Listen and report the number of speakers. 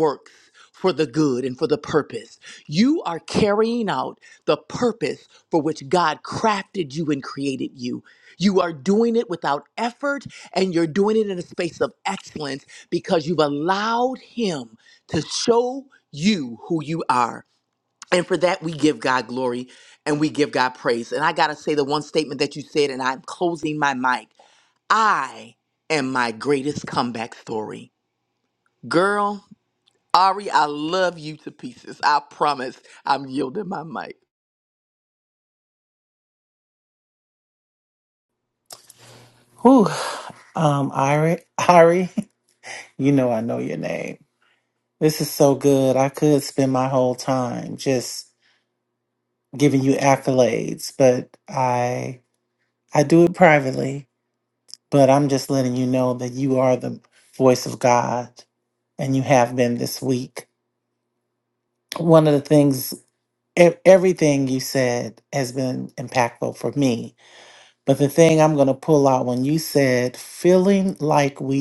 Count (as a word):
two